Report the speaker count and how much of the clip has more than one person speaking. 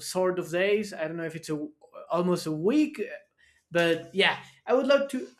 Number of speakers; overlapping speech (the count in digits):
1, no overlap